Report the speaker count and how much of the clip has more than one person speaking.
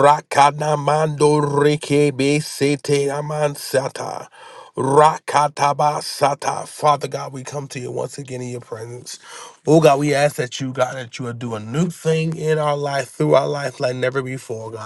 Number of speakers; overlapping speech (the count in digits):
1, no overlap